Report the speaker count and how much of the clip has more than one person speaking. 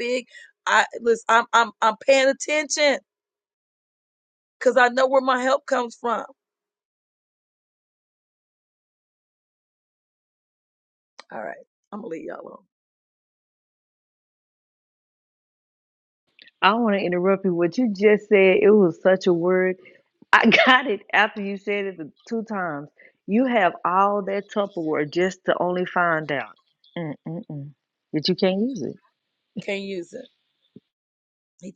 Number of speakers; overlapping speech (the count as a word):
two, no overlap